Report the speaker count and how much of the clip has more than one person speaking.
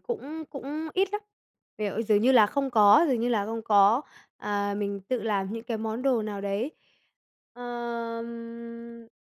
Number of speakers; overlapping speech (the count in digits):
1, no overlap